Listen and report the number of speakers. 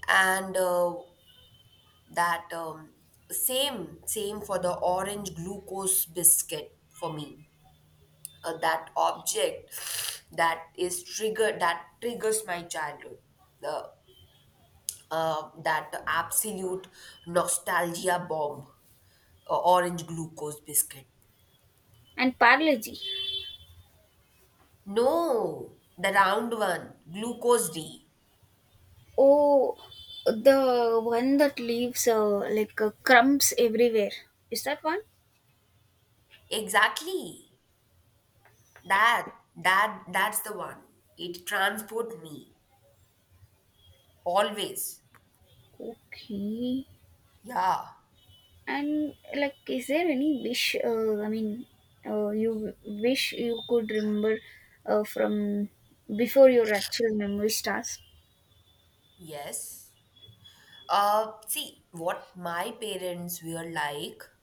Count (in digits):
2